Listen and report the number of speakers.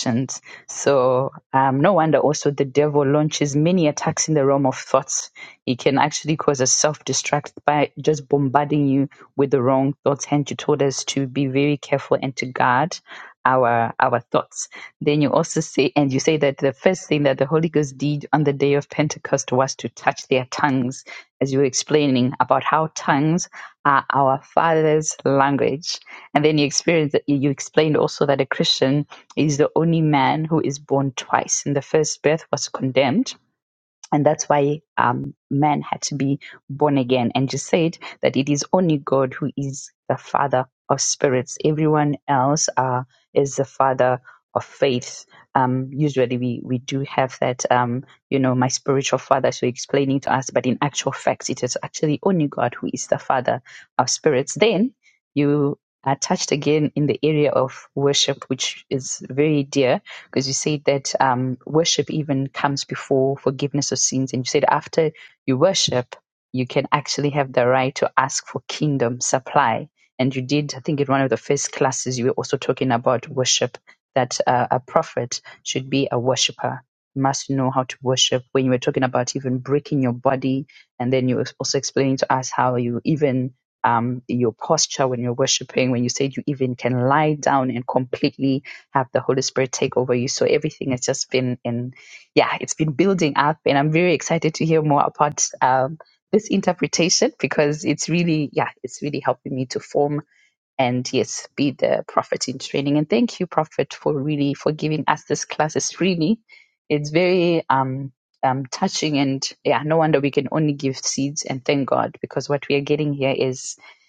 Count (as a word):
one